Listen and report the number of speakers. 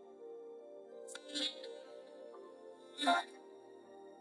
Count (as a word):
zero